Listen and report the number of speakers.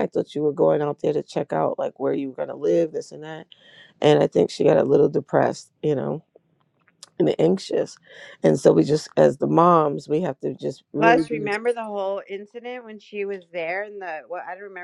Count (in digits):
2